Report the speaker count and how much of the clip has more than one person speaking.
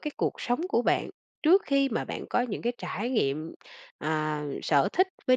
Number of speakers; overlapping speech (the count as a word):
one, no overlap